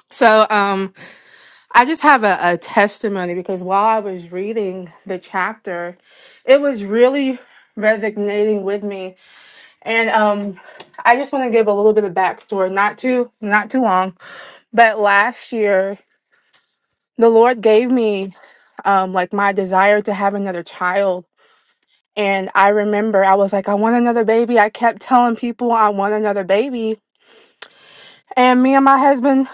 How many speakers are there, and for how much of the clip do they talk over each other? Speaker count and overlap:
one, no overlap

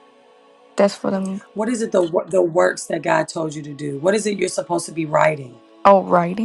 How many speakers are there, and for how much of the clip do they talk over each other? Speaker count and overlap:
two, no overlap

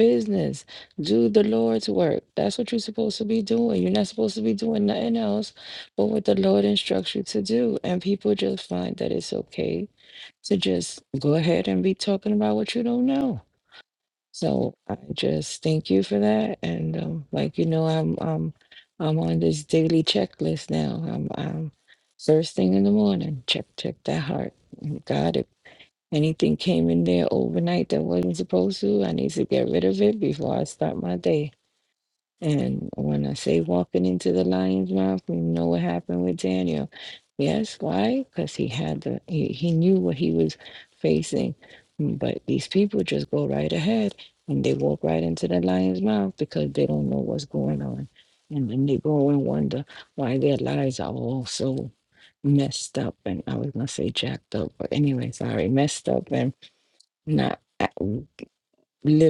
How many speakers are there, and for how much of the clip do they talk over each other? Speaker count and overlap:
one, no overlap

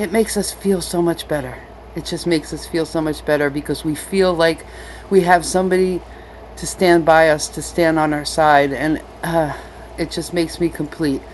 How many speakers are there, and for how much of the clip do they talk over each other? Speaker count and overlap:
one, no overlap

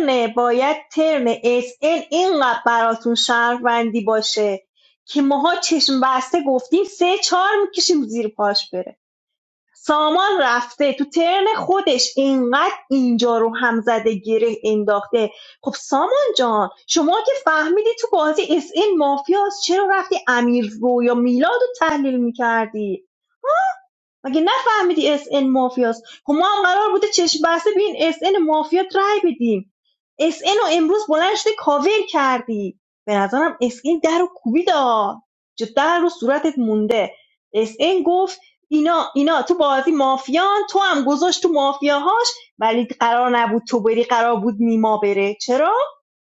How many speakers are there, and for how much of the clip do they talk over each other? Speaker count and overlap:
one, no overlap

